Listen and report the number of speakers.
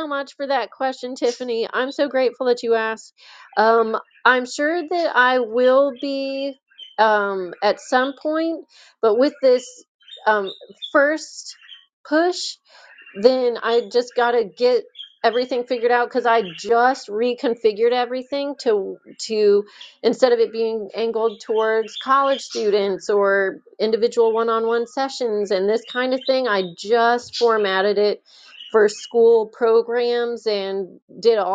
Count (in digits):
1